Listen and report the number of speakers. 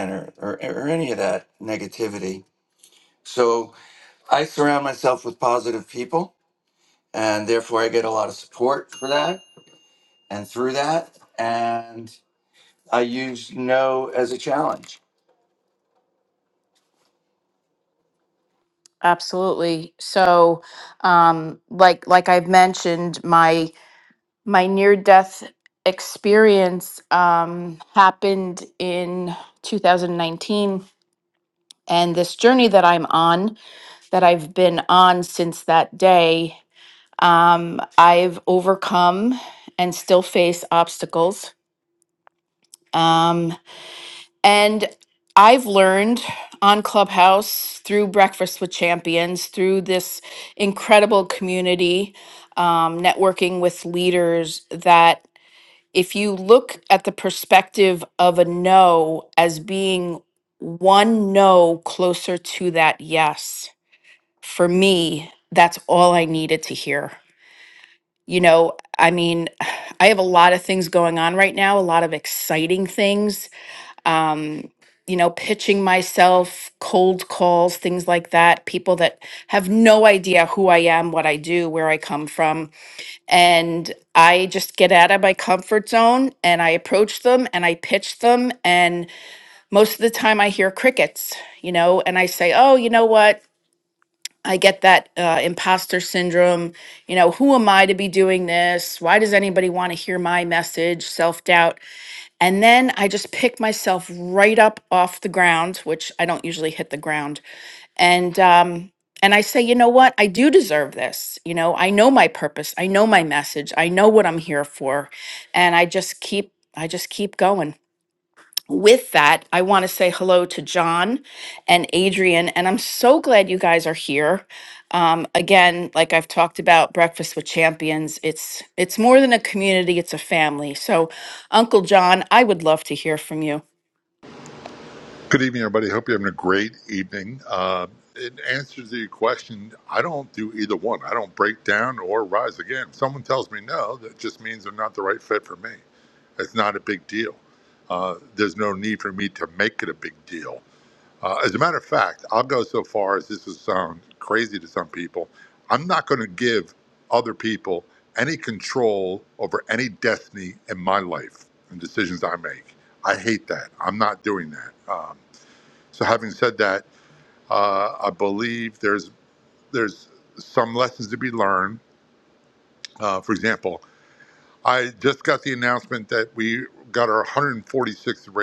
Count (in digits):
3